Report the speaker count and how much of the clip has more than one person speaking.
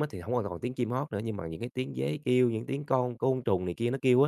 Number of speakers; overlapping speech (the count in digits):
1, no overlap